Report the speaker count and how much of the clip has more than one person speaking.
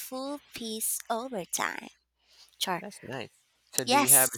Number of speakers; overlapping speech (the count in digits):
2, about 11%